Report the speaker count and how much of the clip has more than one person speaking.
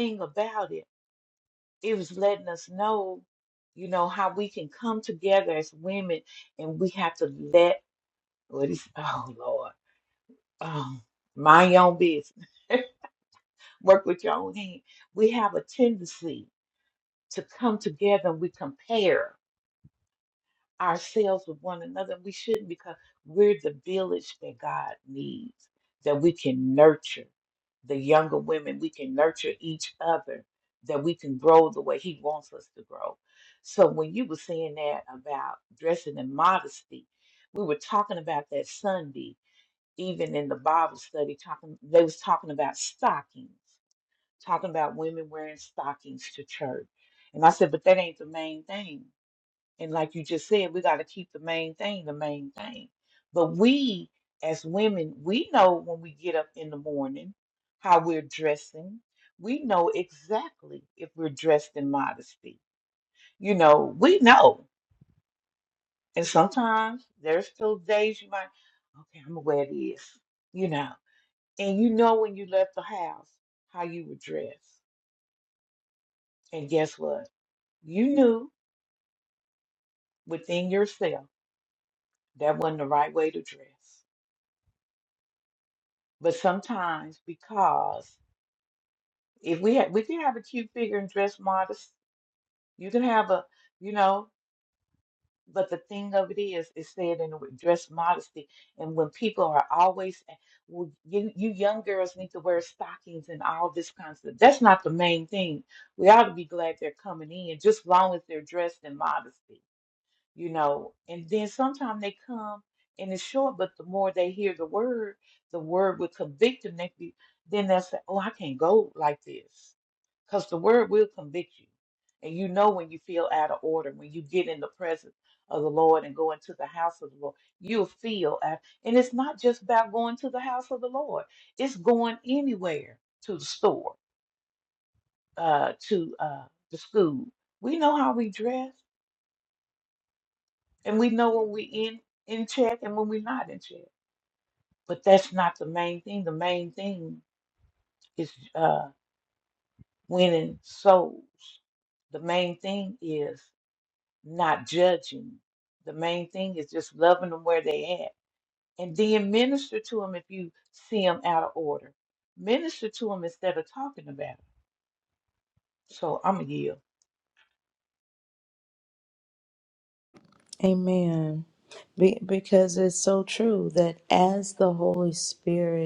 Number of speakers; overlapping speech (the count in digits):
2, no overlap